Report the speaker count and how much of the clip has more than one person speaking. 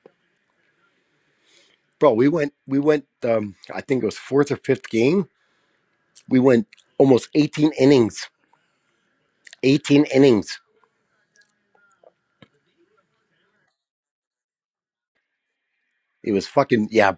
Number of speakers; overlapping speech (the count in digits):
1, no overlap